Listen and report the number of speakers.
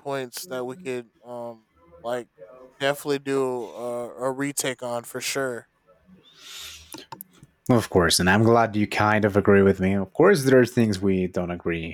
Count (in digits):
2